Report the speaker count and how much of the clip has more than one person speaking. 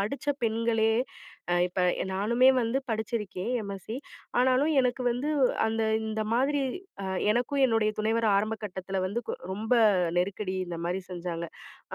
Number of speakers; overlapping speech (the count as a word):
one, no overlap